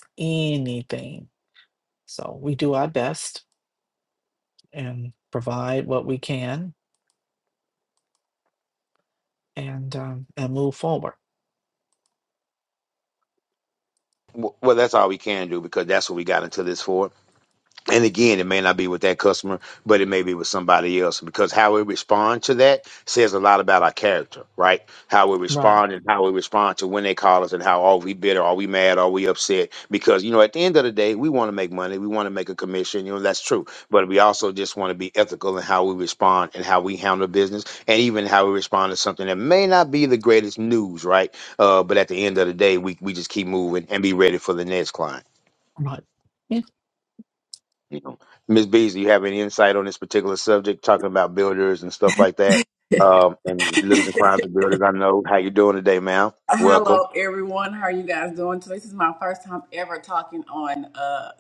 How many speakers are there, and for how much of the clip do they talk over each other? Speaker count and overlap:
3, about 1%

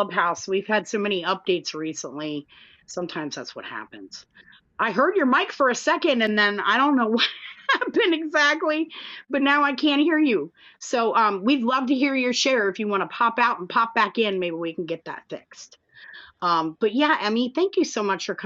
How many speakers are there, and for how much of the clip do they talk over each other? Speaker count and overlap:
1, no overlap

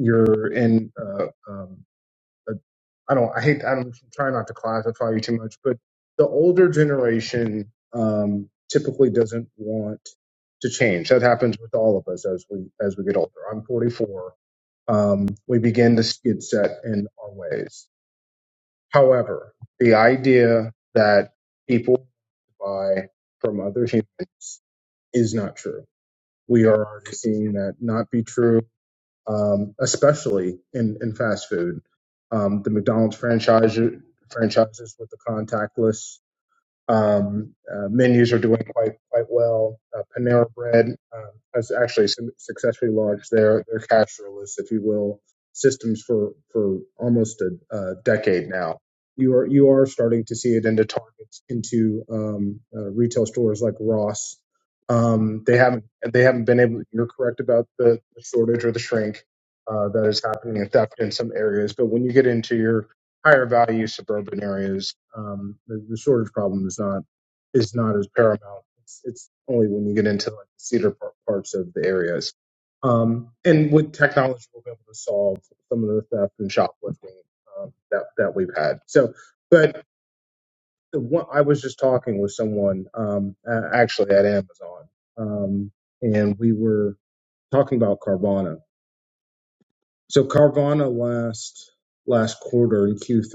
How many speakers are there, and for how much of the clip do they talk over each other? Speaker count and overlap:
1, no overlap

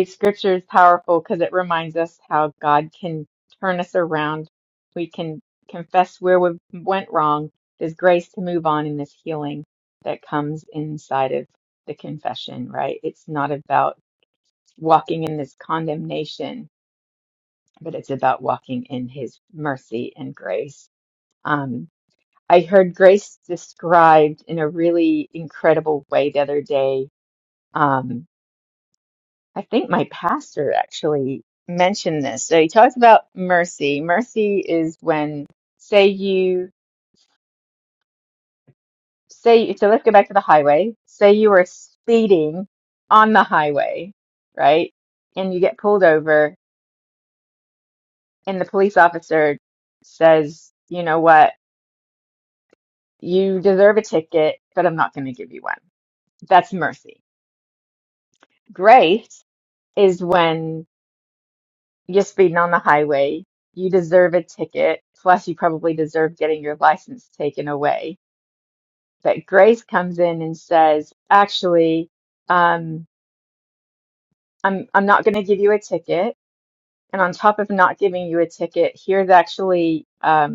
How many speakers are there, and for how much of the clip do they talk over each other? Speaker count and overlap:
1, no overlap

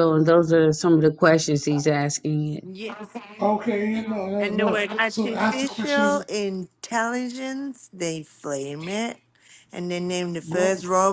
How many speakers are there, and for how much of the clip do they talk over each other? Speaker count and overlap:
3, about 21%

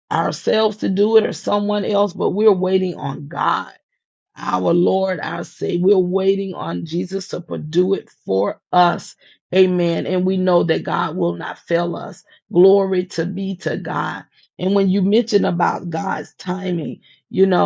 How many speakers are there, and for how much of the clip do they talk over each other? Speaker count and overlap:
1, no overlap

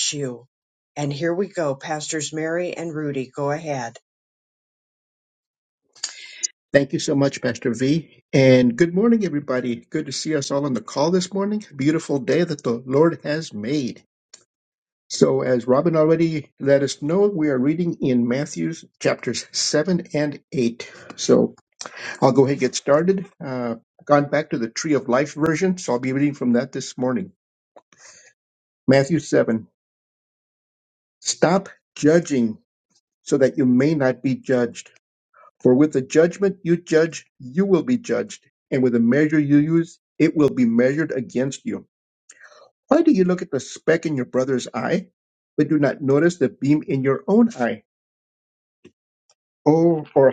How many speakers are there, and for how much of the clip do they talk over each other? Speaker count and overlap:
2, no overlap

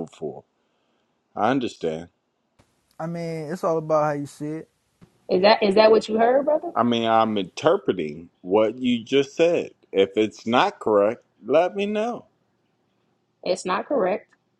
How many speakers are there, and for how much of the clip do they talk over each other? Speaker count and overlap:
3, no overlap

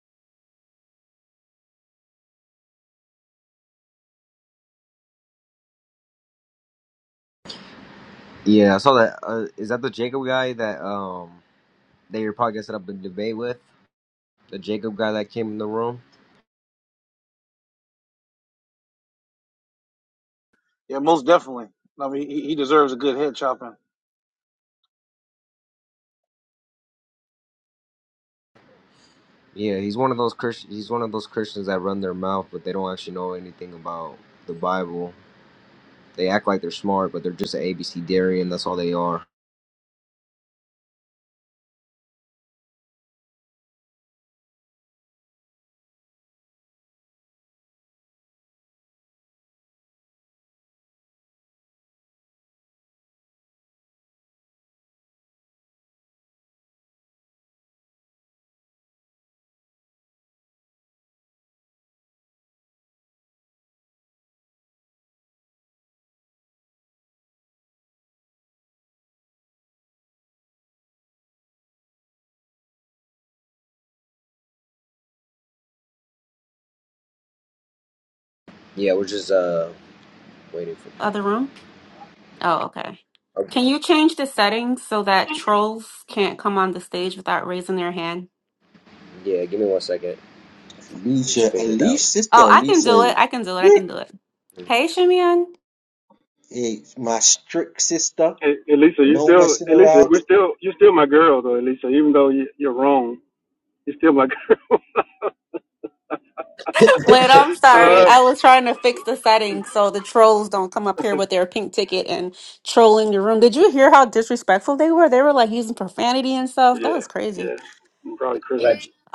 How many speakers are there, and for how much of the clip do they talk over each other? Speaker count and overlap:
5, about 3%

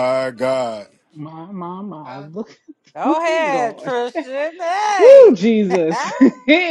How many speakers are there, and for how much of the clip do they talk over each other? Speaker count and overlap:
3, about 22%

